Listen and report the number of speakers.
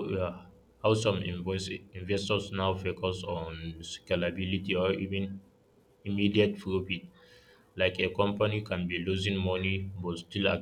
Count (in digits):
1